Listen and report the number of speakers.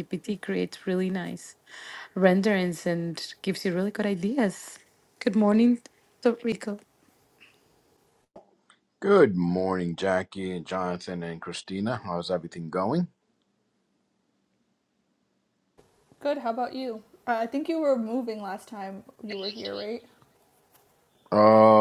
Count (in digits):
3